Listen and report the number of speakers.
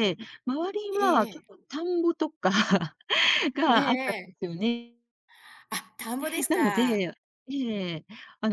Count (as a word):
two